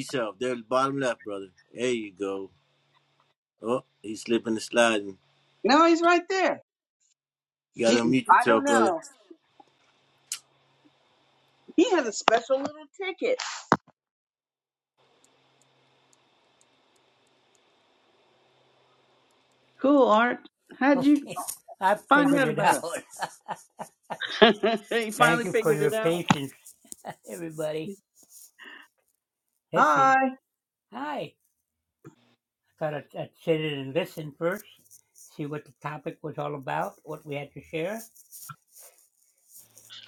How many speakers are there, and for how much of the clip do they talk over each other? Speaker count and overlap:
three, about 9%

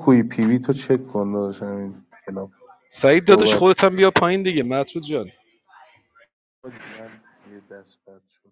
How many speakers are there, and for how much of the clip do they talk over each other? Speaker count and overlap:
two, about 4%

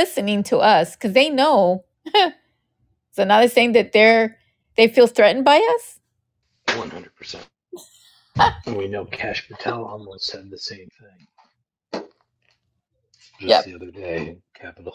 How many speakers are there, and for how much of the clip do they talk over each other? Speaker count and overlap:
two, about 1%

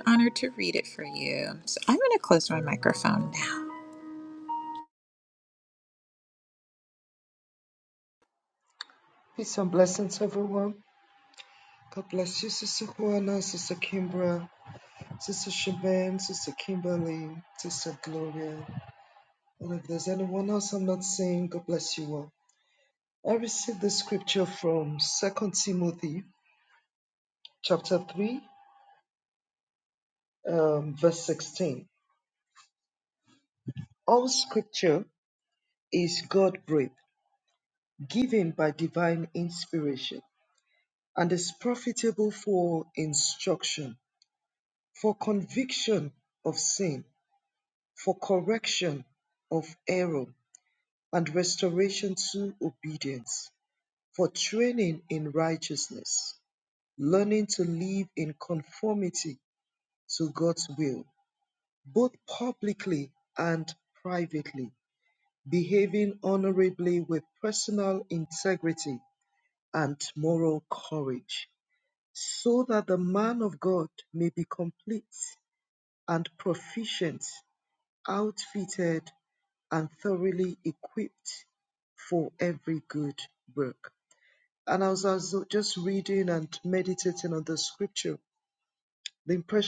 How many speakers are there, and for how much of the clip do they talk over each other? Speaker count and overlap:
two, no overlap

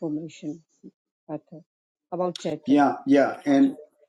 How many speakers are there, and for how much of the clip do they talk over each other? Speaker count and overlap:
two, about 3%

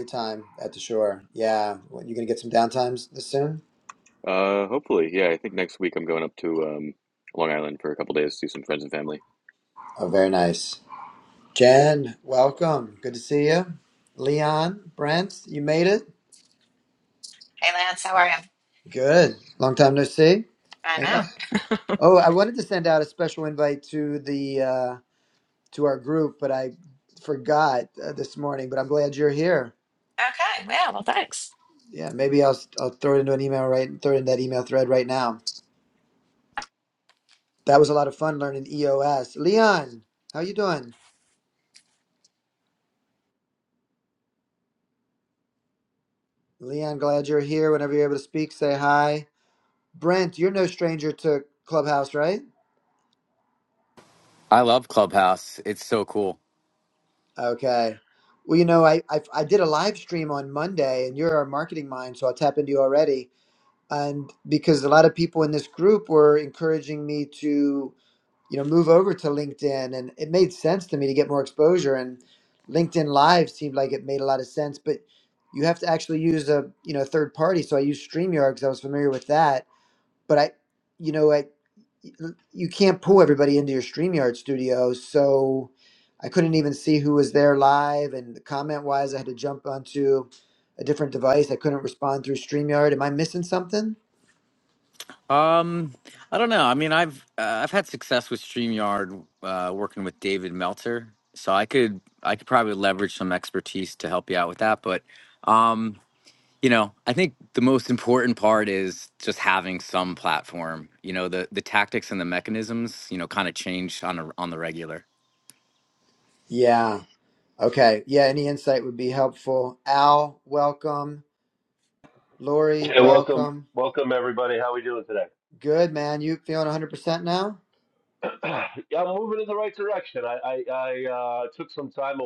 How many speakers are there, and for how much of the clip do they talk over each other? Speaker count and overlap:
five, about 1%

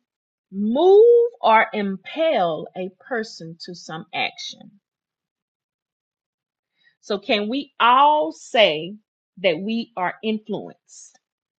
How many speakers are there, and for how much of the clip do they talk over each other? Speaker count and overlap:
one, no overlap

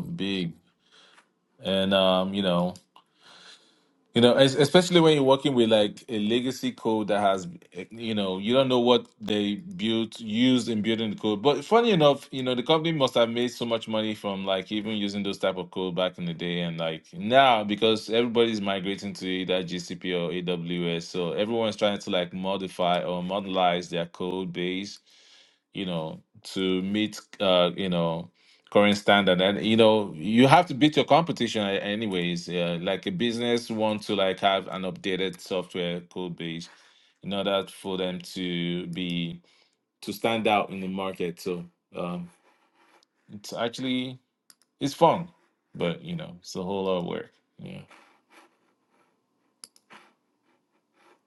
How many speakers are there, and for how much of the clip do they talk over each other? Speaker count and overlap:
one, no overlap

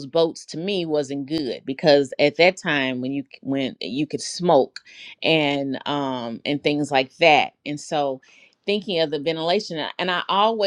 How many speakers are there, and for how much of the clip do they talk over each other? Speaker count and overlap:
one, no overlap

